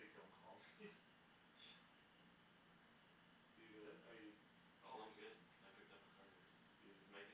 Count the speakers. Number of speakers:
two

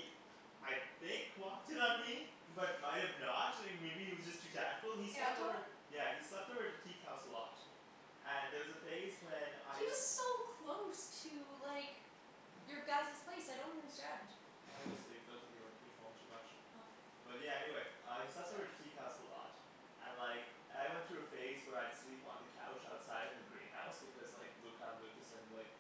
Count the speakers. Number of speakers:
two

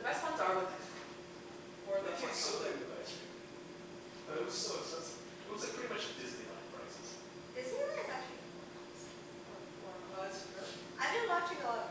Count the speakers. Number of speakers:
three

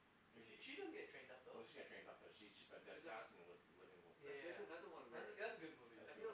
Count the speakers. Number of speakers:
three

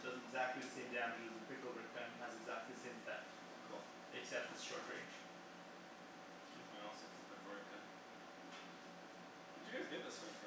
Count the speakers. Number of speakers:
two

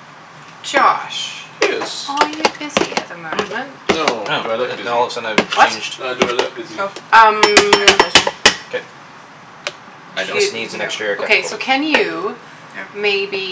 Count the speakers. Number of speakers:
four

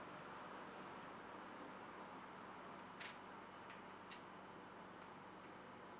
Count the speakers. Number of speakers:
zero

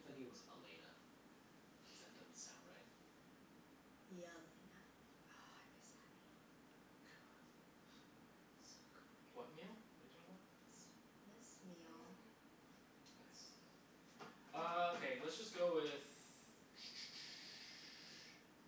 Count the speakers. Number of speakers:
three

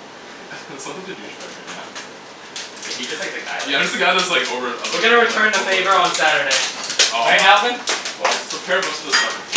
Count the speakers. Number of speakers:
three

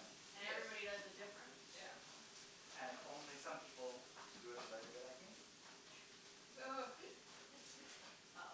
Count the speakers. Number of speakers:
three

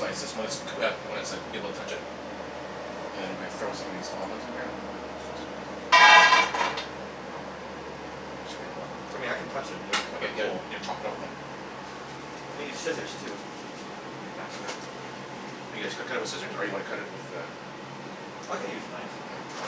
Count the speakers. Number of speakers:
two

